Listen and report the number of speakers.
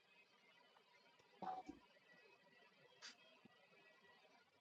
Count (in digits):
0